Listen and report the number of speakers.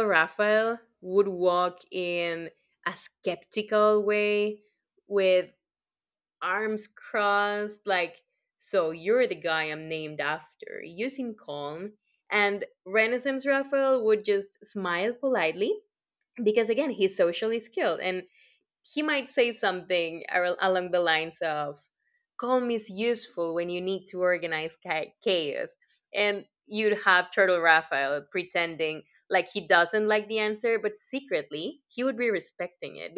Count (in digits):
1